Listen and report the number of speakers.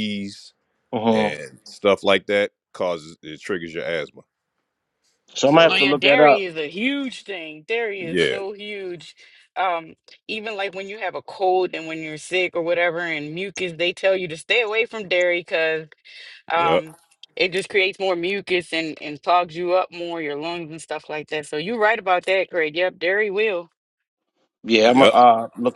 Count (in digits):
3